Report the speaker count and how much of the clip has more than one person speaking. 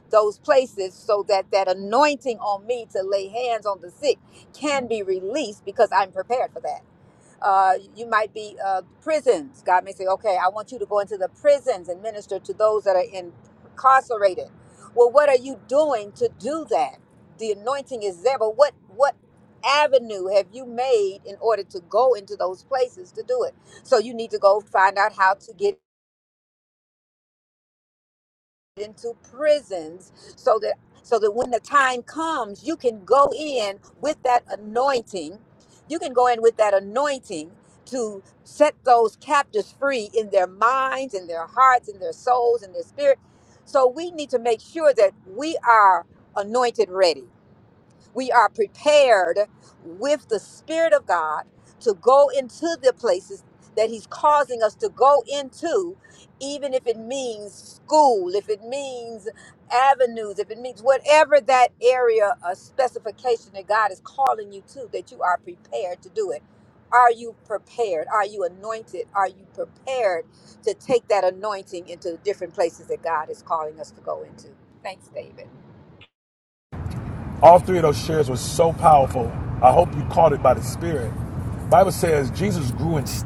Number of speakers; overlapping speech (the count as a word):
two, no overlap